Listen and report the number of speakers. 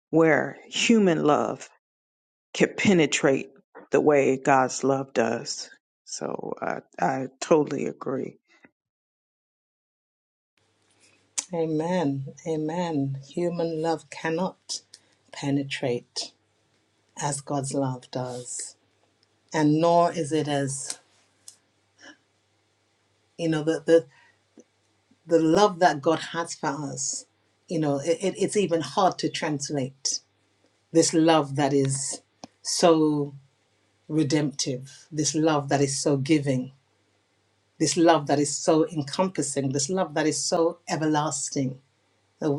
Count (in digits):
2